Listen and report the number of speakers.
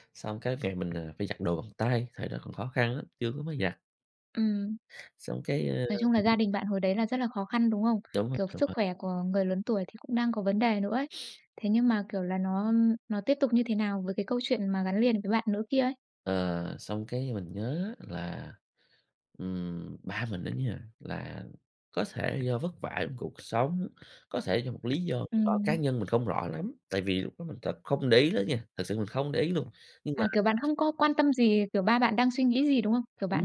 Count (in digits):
2